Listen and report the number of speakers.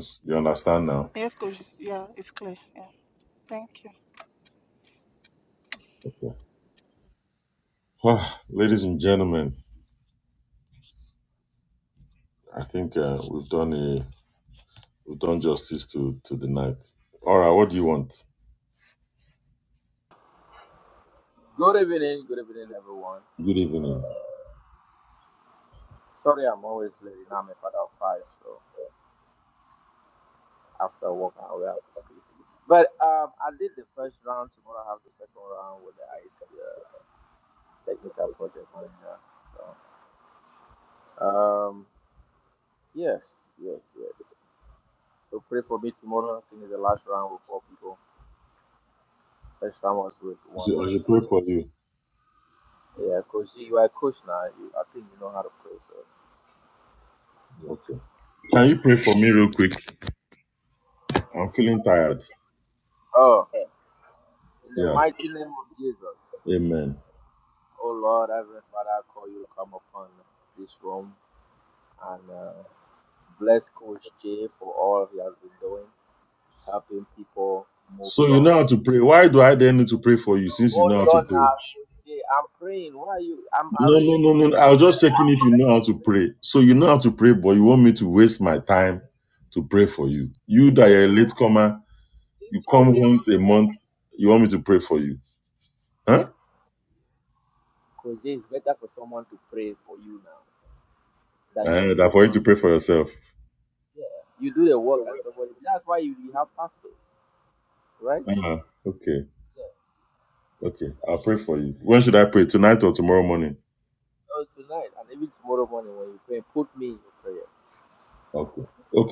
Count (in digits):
3